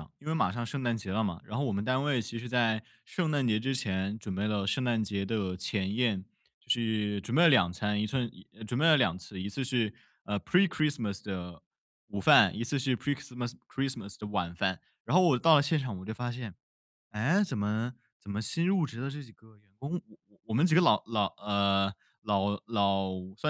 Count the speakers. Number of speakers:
1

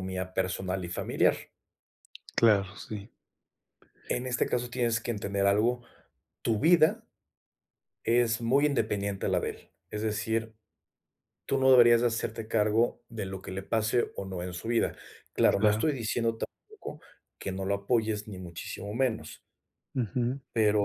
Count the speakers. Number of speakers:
2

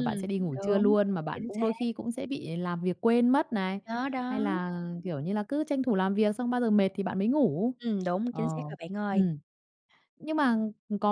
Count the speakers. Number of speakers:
2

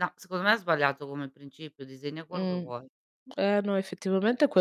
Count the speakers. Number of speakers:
2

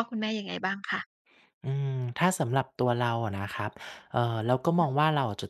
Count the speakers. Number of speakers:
2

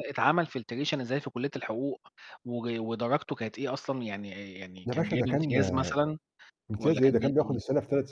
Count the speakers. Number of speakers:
2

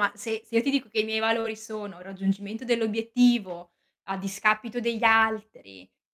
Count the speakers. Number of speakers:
1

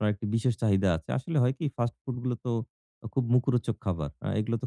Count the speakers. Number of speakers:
1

